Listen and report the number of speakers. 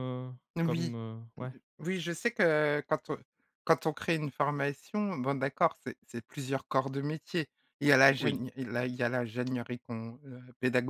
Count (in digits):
2